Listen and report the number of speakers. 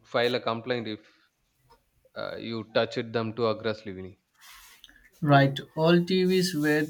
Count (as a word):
two